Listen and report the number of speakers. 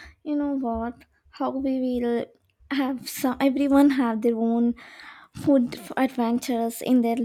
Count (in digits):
1